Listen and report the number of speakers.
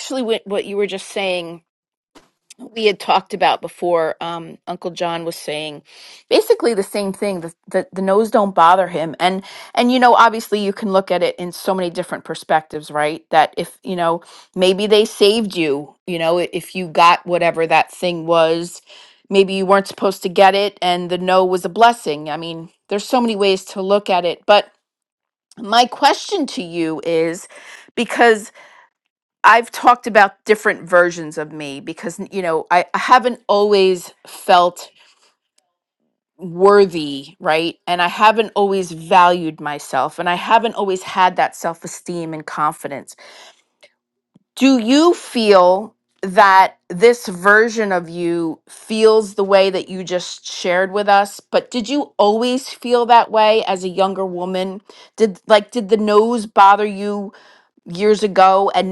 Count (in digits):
1